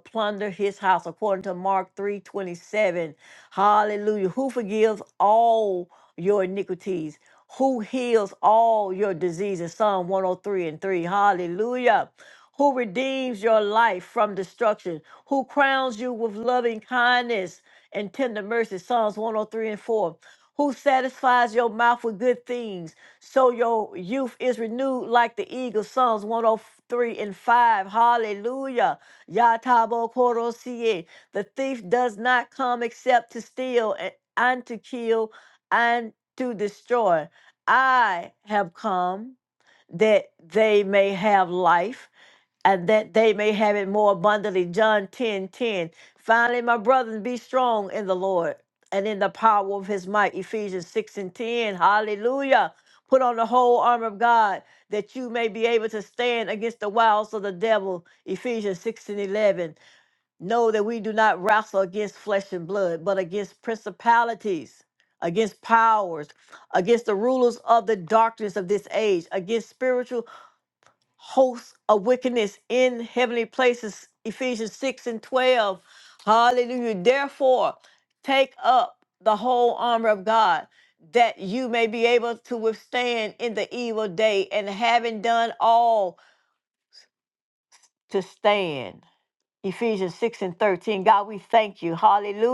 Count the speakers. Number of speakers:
1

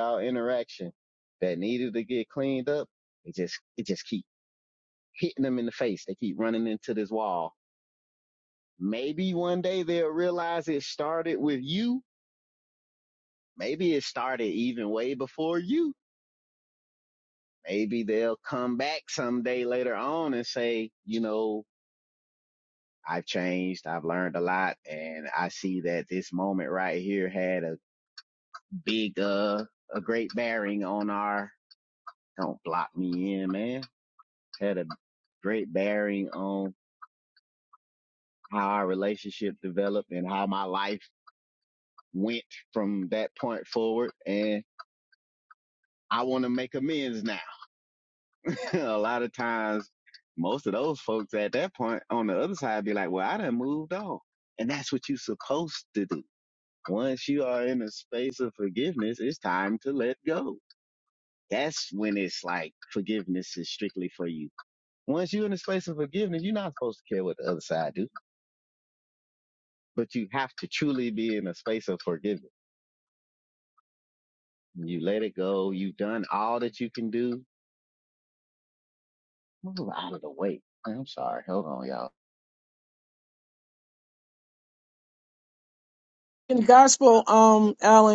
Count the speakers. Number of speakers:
2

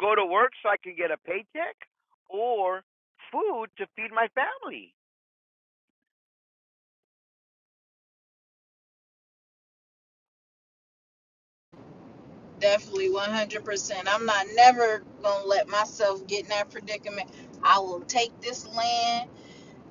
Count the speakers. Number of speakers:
2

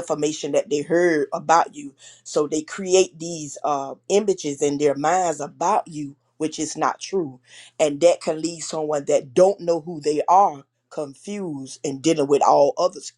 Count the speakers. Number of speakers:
1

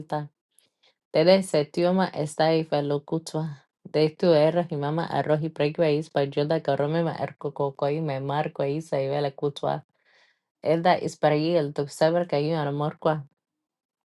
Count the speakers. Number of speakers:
1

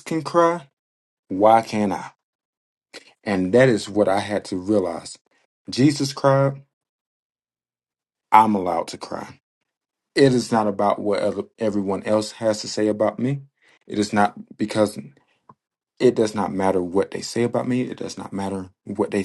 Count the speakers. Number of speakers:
1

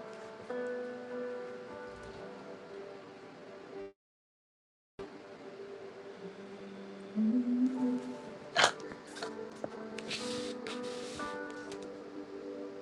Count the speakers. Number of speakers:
0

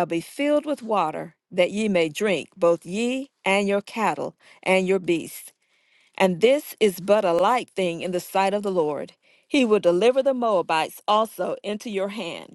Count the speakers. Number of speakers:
1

